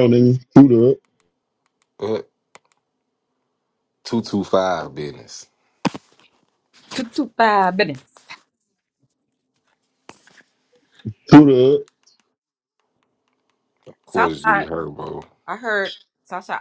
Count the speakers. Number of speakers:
3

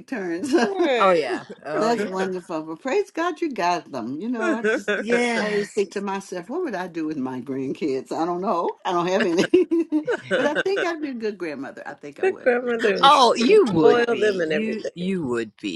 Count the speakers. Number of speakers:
3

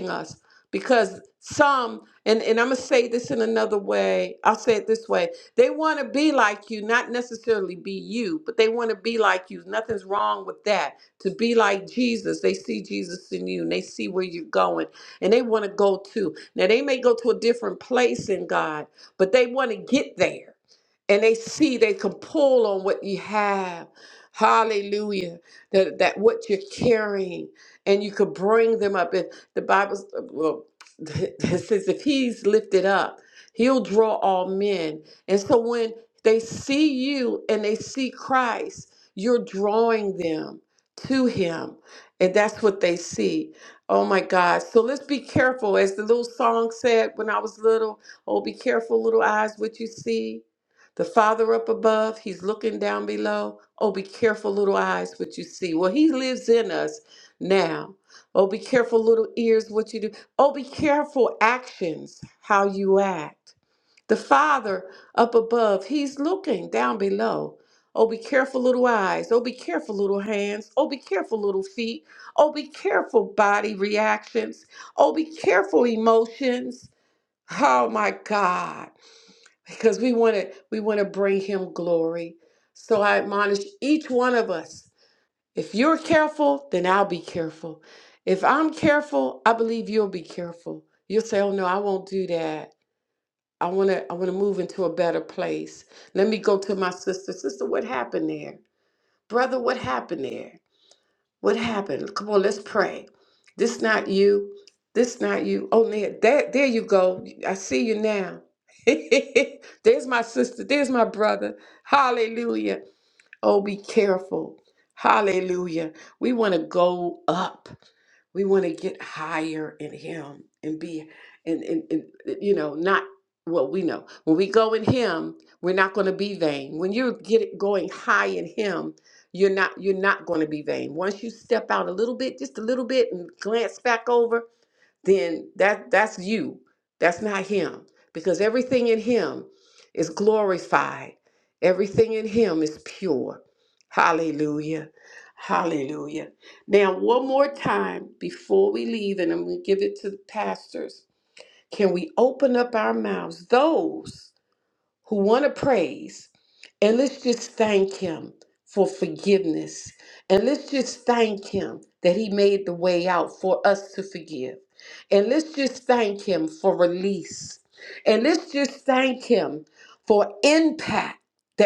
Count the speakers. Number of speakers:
1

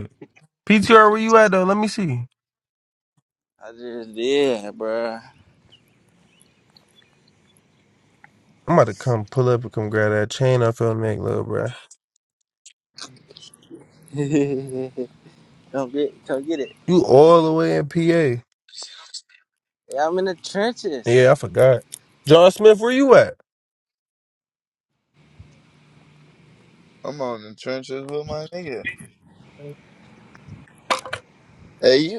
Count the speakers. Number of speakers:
3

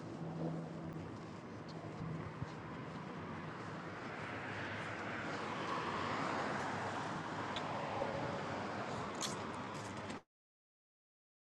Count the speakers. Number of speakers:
0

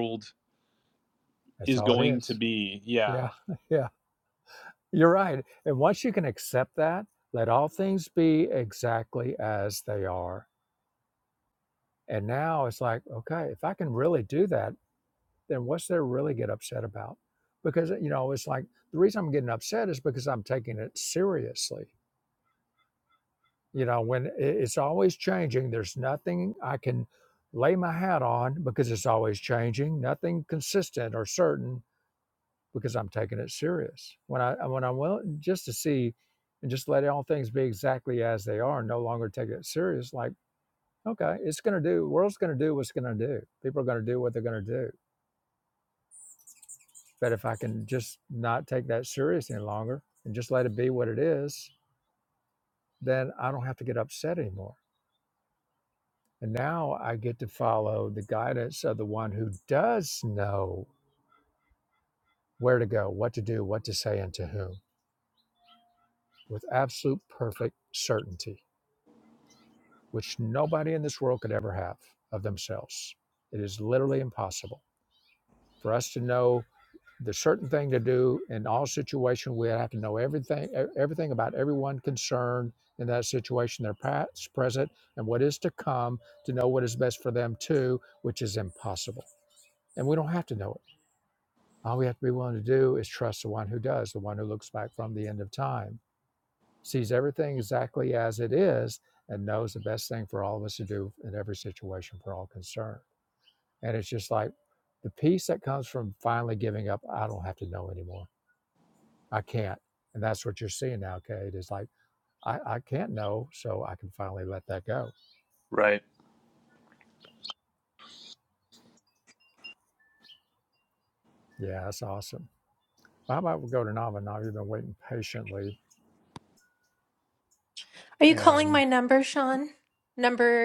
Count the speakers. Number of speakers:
3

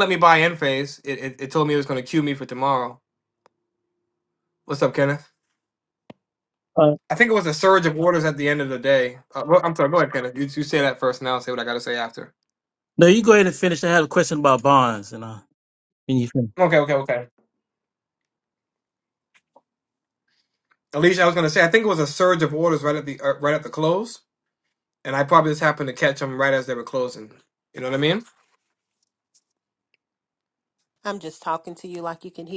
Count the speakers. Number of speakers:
3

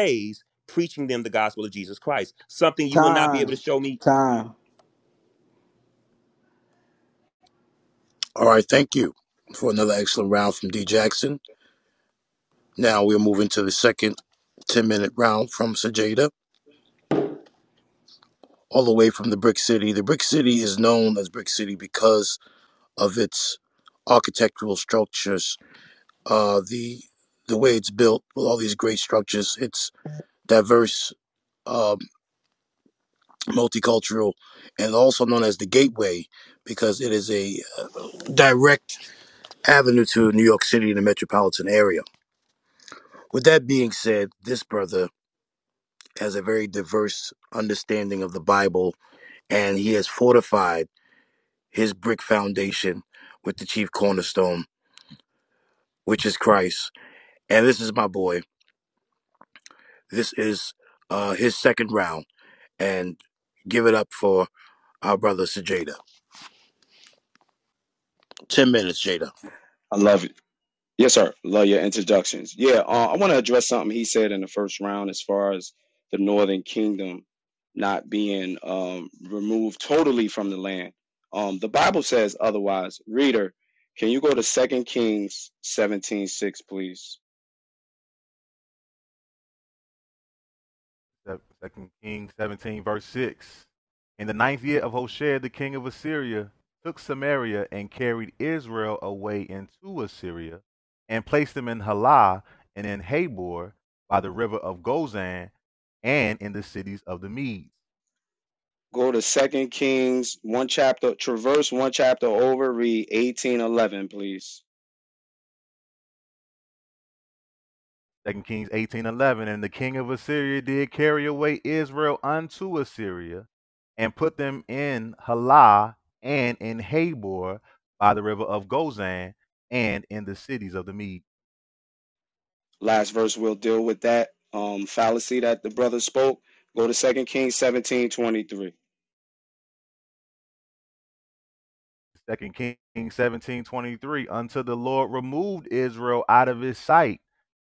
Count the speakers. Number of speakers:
5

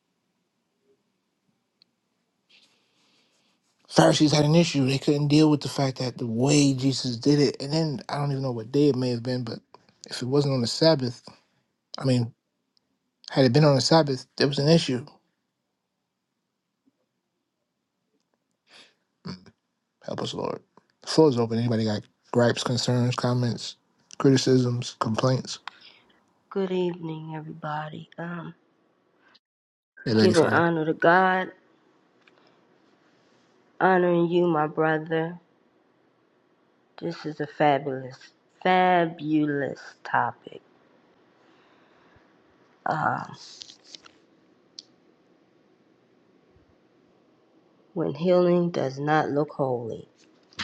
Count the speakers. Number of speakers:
2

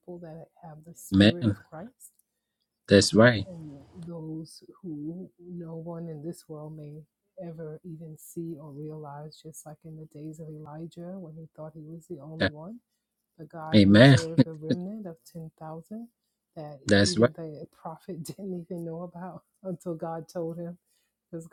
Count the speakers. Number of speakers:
2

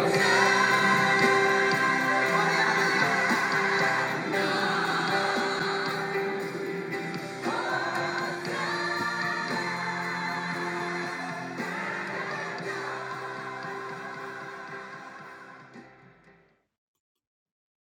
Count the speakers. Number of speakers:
0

